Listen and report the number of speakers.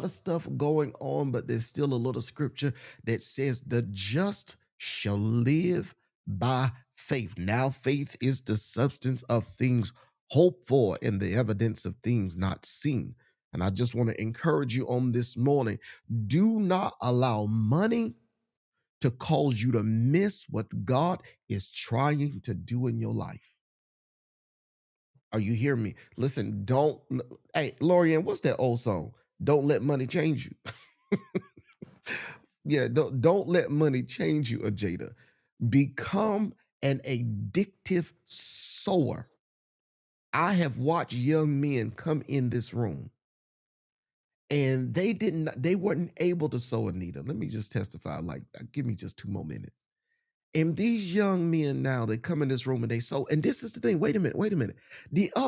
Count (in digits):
1